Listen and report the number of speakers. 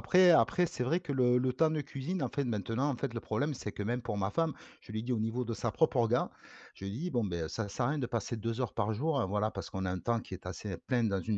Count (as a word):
one